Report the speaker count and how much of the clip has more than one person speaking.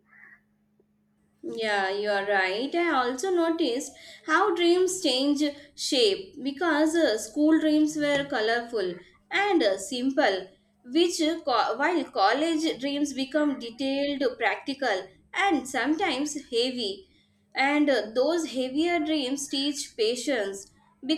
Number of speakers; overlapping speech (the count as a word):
one, no overlap